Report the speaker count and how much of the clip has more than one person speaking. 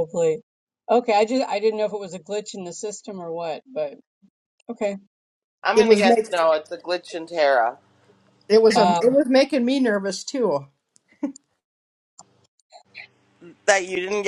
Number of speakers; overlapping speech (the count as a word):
three, about 6%